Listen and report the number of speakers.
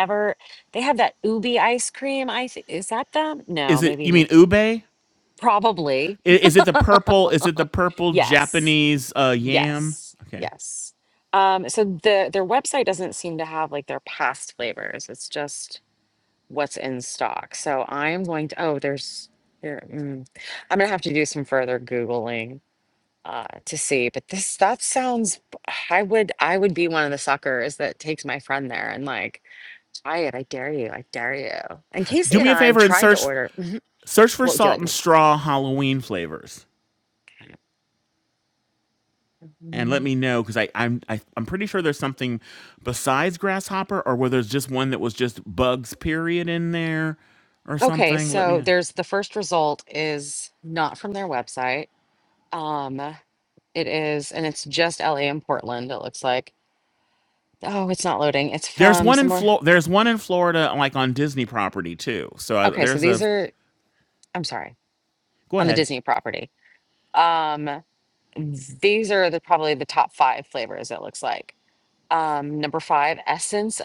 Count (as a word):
two